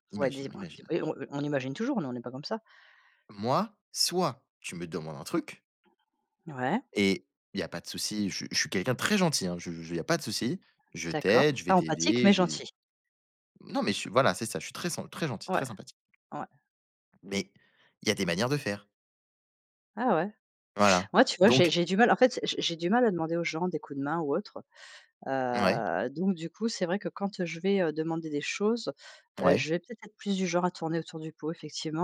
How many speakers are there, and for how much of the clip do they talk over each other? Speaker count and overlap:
two, about 10%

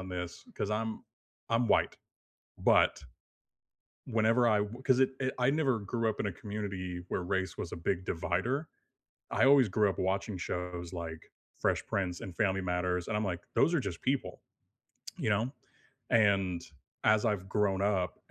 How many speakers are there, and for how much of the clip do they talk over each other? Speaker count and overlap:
one, no overlap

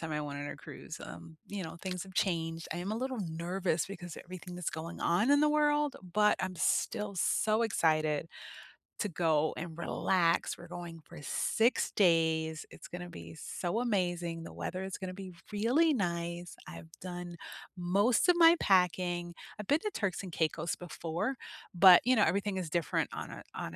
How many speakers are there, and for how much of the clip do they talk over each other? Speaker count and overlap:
one, no overlap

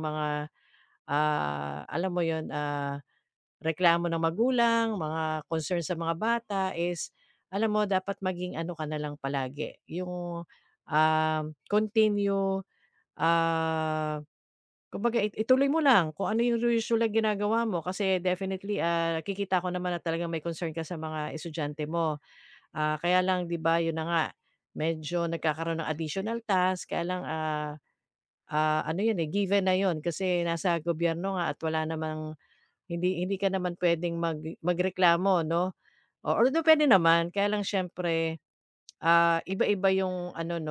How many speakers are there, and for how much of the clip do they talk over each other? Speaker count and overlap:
one, no overlap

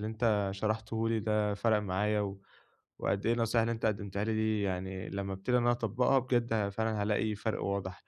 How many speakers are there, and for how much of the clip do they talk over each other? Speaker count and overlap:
one, no overlap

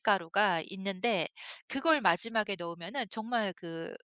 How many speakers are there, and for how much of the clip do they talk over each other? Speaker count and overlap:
one, no overlap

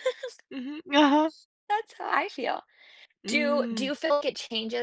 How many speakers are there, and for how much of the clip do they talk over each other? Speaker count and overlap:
two, about 12%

